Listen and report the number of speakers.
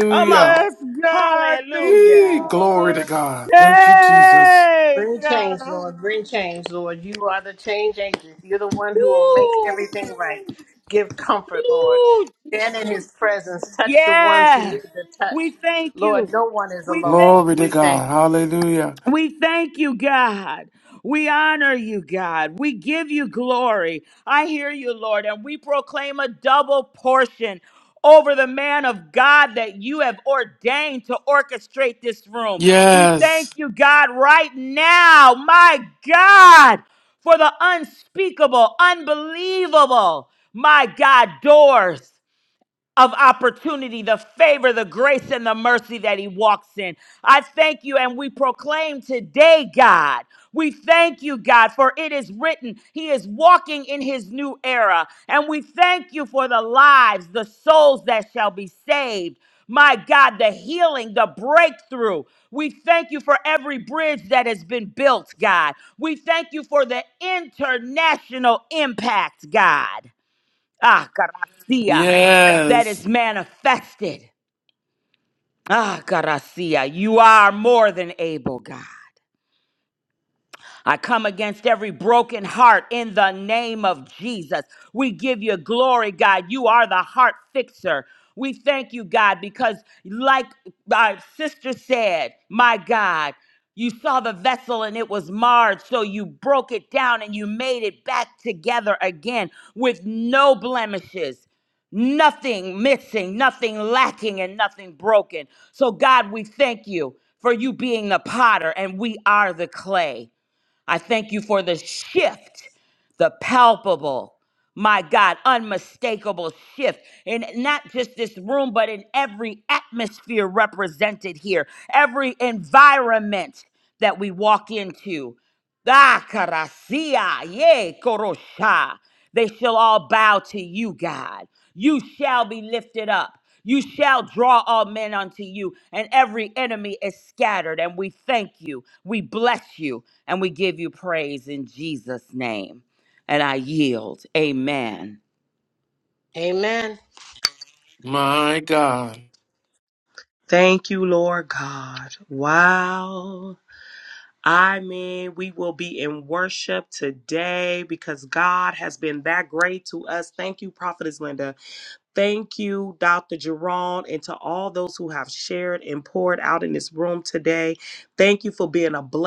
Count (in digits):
4